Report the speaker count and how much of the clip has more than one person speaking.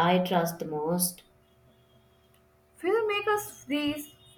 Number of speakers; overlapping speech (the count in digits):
2, no overlap